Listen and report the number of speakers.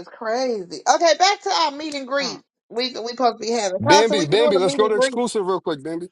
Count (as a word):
two